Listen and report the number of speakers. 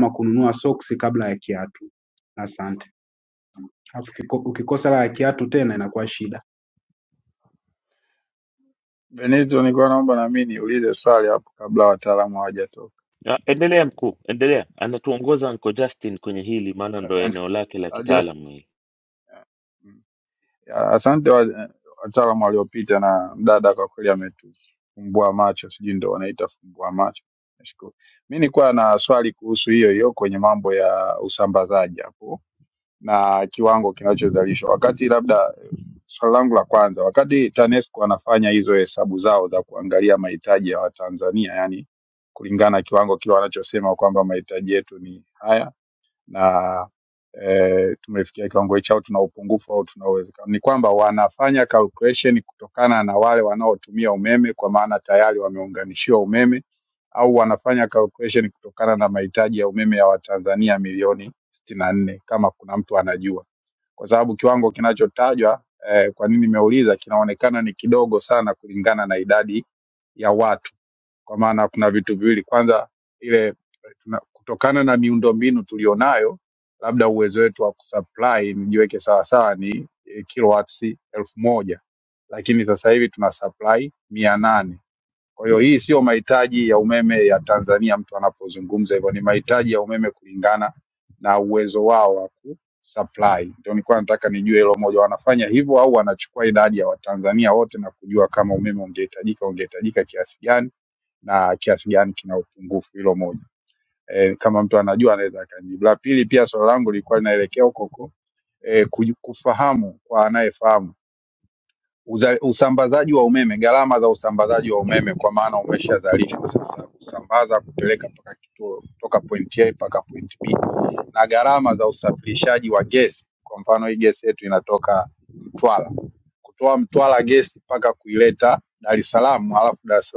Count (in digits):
3